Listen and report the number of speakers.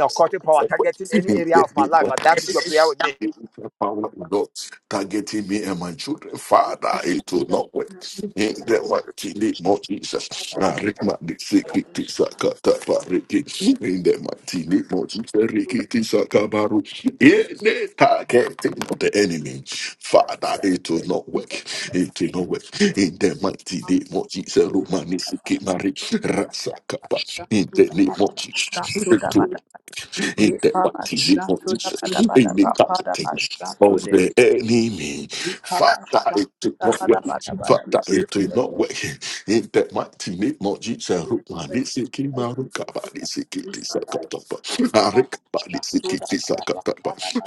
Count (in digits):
3